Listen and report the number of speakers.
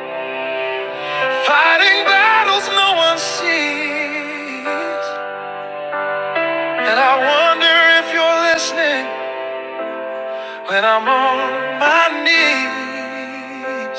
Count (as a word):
one